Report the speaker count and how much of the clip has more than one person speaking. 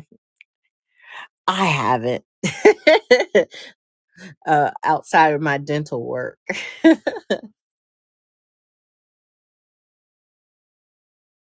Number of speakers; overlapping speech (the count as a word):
one, no overlap